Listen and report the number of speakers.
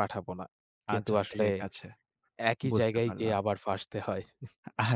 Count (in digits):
2